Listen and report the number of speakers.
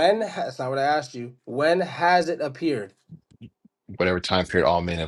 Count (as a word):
two